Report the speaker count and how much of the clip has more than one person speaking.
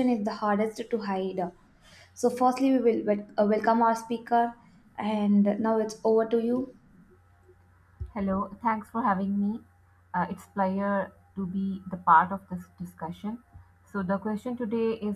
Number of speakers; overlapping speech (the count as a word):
two, no overlap